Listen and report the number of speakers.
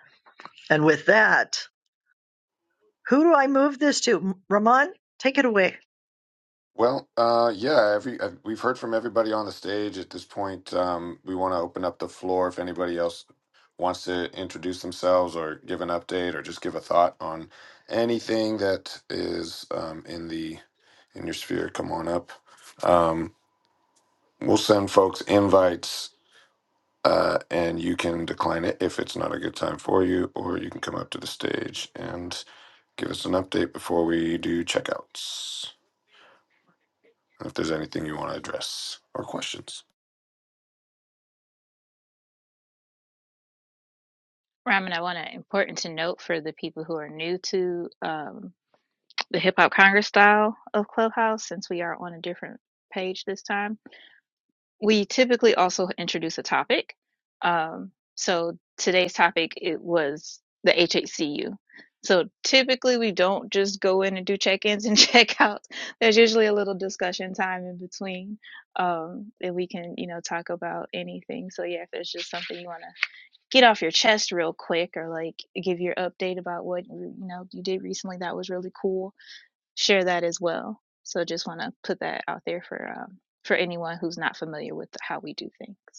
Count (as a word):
three